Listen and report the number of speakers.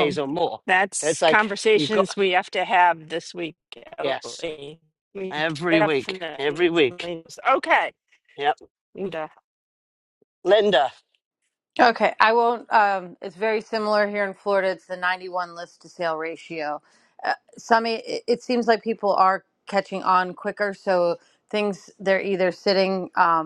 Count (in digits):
3